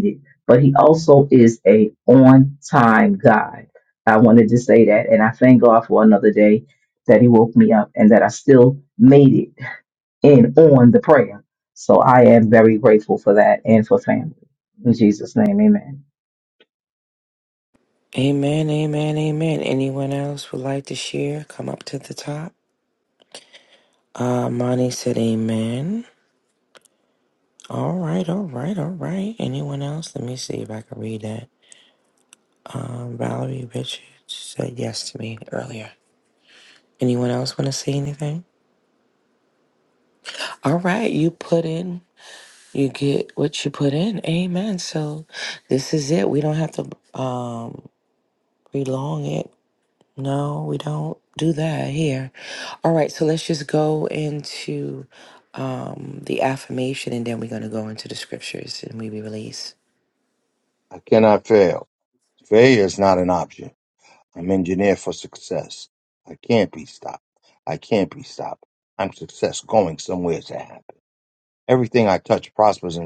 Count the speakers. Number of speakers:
three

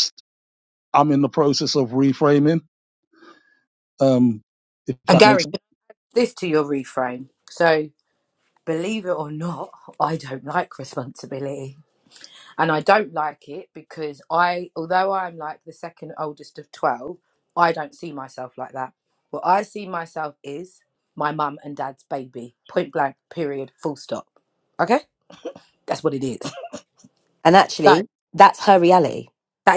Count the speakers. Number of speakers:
three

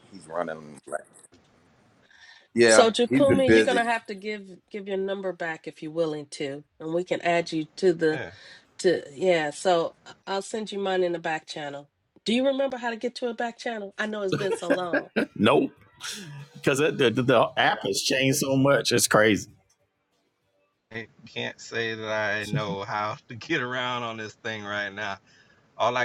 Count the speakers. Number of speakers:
four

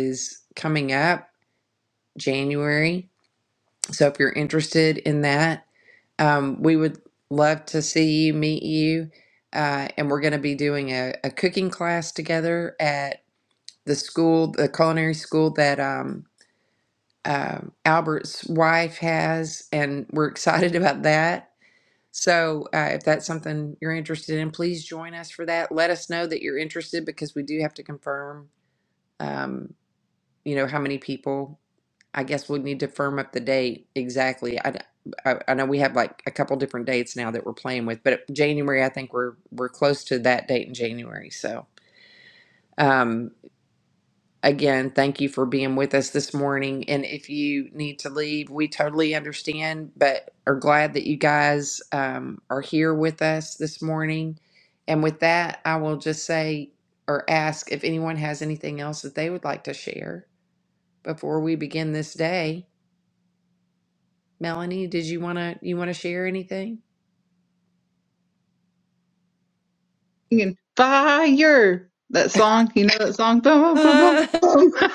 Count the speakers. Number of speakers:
two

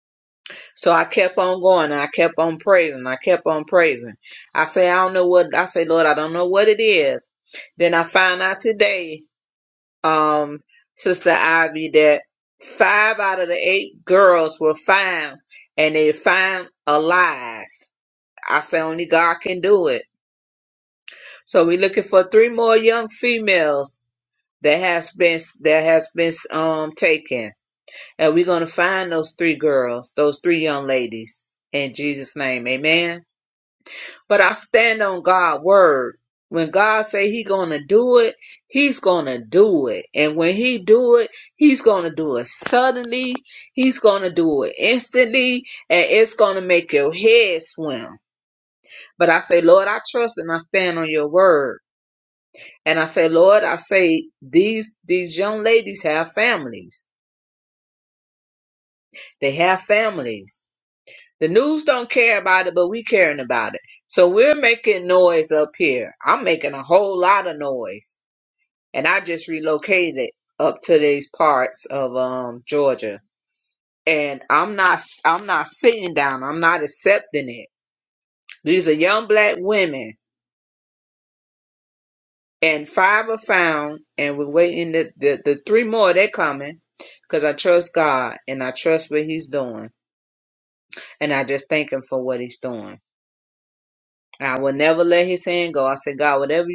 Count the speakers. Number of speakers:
one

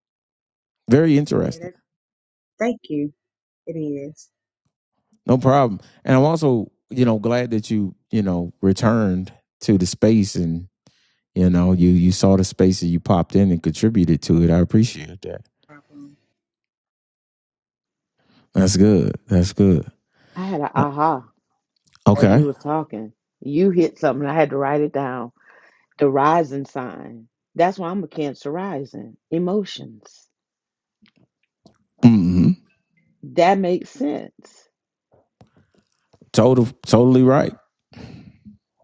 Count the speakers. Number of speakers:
three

